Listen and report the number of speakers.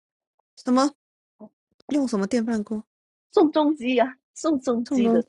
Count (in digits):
2